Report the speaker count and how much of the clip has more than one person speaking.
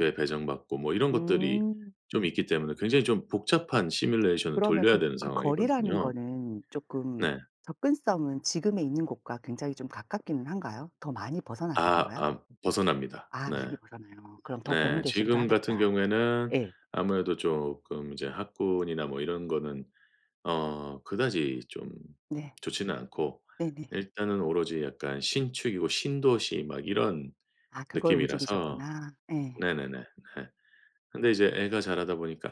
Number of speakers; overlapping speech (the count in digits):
2, about 16%